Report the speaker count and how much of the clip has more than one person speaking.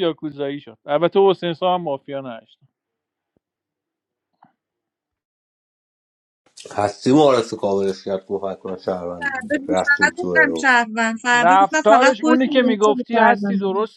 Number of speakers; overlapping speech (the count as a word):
three, about 24%